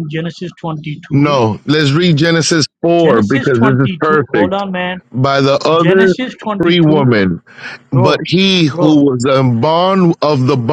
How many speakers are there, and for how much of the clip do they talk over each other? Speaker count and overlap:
two, about 31%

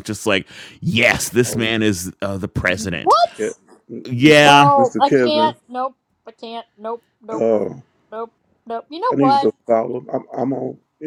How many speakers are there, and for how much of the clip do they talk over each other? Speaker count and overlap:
three, about 20%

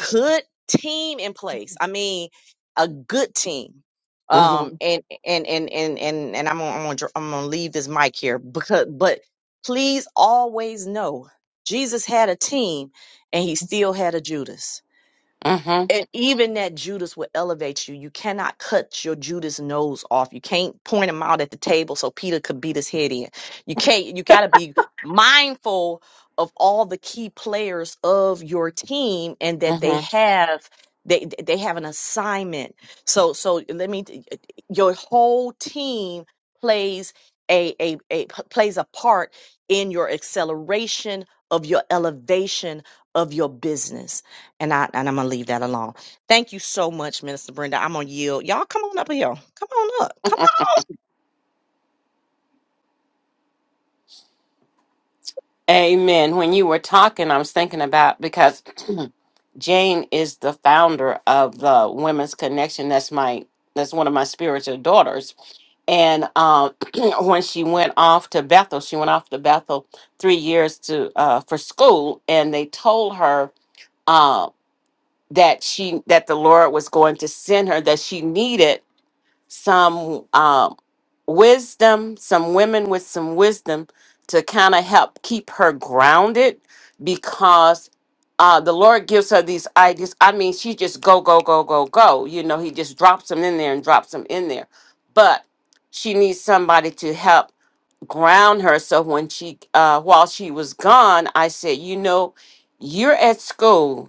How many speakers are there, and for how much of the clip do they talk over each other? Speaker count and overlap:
two, about 1%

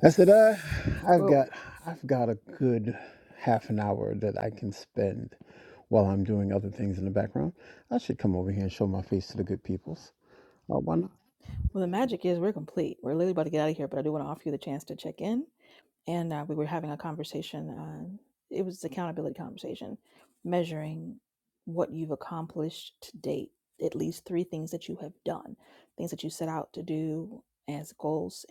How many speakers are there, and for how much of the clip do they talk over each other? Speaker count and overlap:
two, about 1%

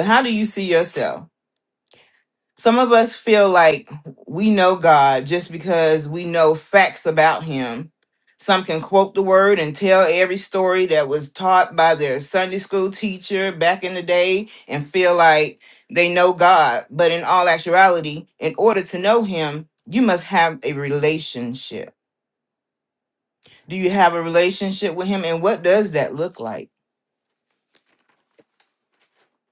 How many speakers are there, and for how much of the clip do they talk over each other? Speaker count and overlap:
one, no overlap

